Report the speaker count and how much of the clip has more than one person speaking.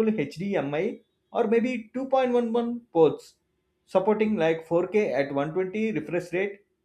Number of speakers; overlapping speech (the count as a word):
one, no overlap